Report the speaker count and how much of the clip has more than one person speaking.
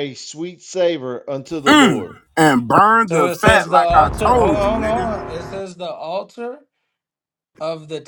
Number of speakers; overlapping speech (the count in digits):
3, about 33%